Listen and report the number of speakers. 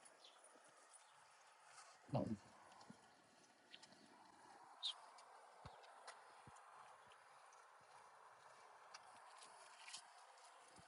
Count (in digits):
0